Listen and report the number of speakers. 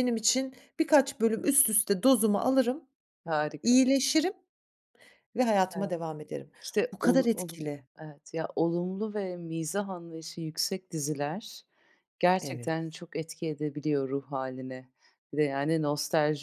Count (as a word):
two